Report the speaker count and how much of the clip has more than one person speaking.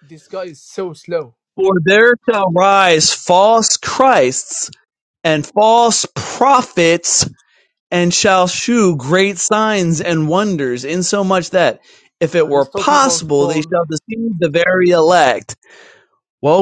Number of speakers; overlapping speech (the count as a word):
two, about 8%